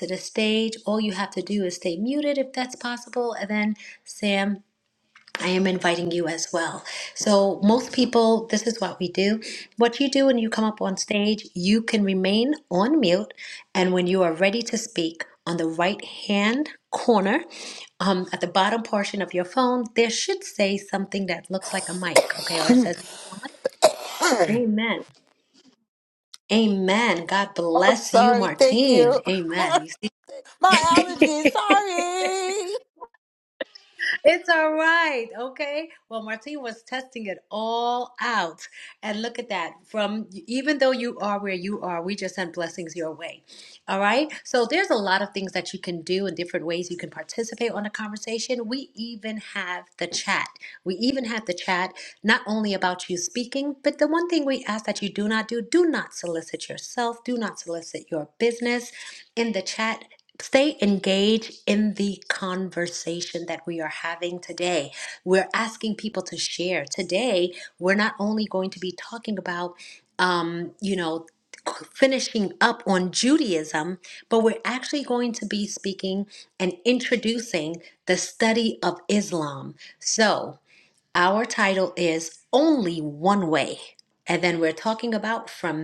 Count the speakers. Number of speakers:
2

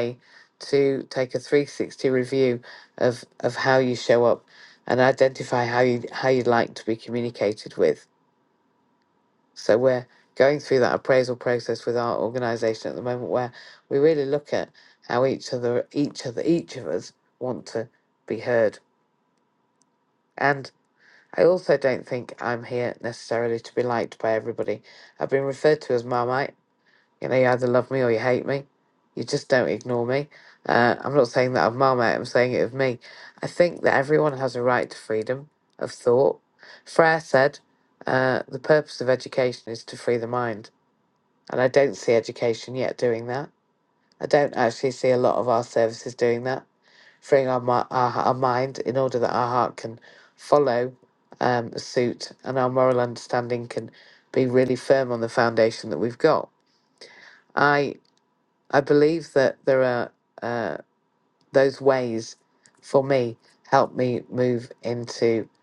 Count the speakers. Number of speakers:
1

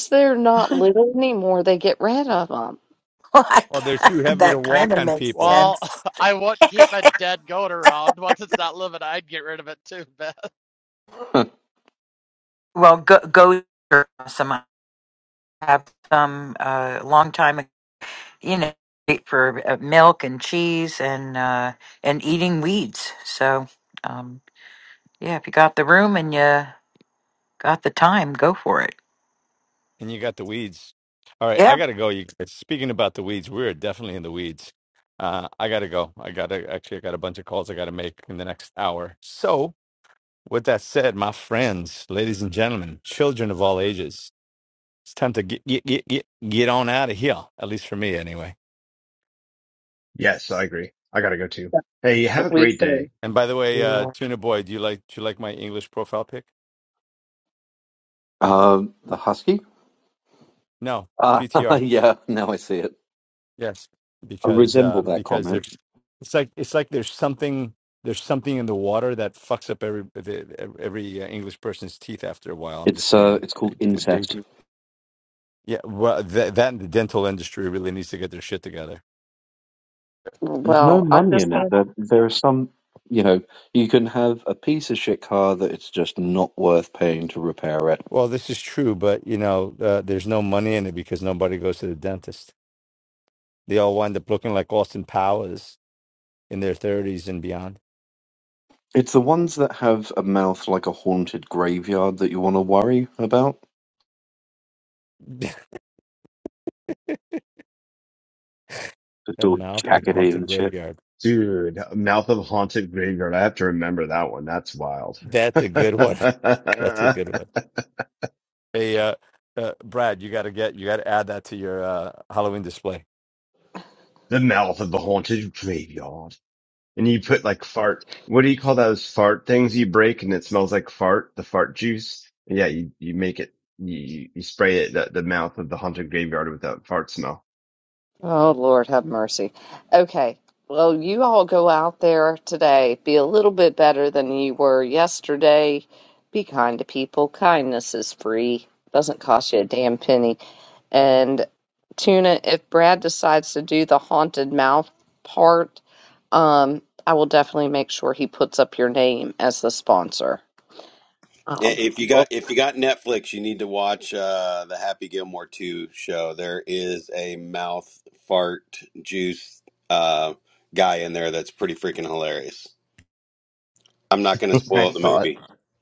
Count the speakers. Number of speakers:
7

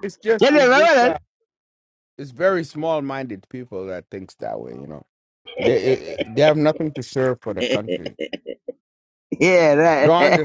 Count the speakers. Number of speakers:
2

